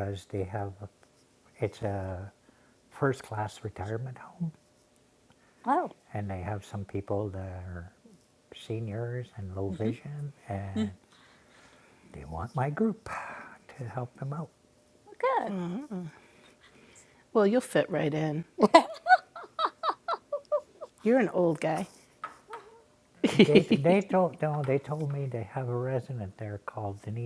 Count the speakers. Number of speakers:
three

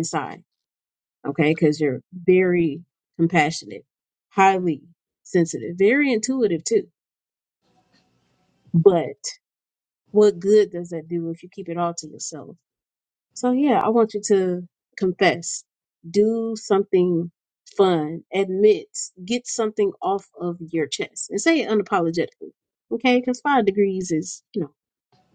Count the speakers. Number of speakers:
one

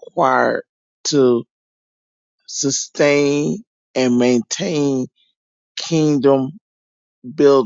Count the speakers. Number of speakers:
one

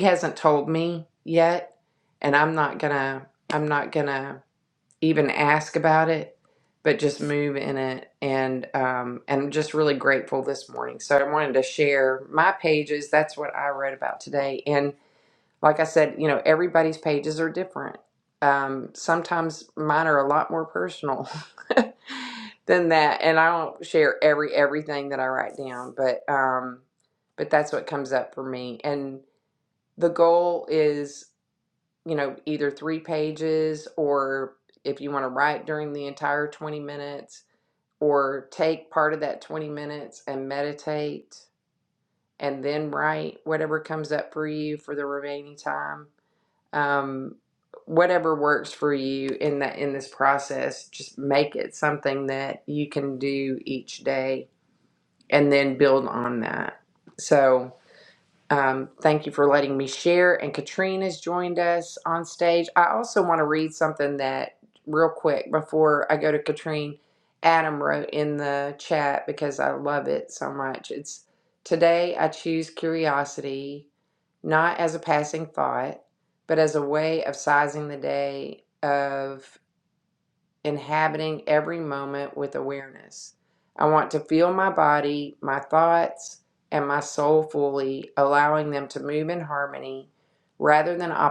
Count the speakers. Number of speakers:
one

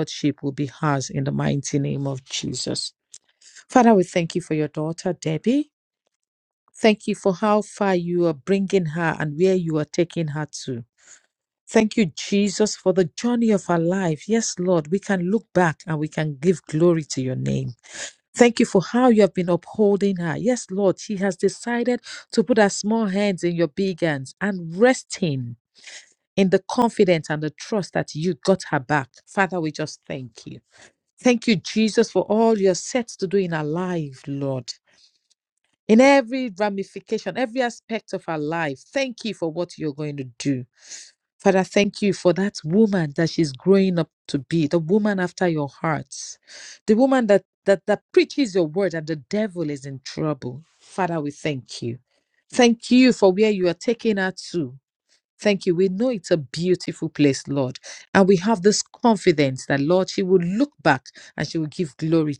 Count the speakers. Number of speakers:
one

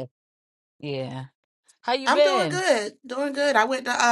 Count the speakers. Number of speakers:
two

